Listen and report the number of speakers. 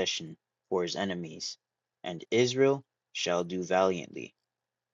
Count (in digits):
1